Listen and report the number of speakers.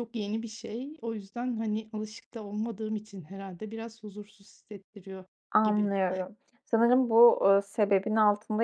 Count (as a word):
two